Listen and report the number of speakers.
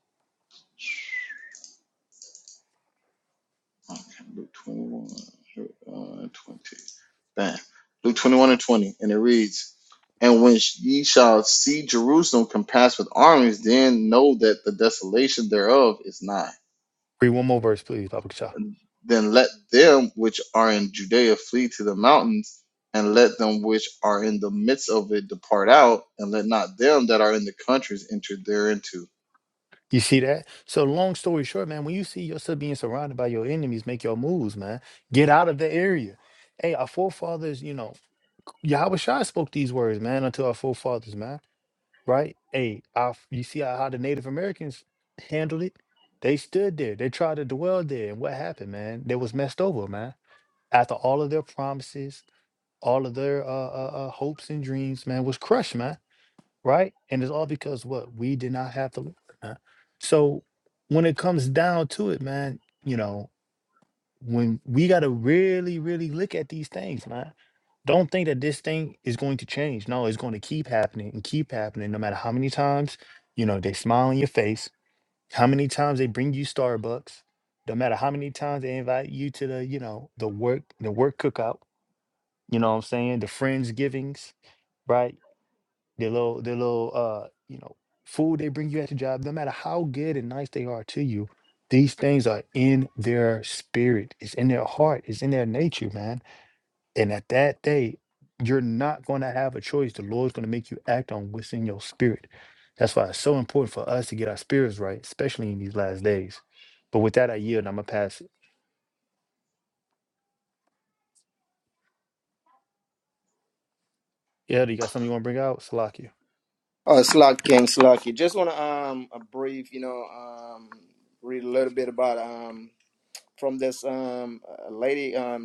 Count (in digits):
3